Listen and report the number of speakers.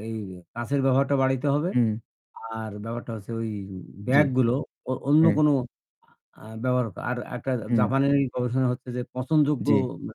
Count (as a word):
two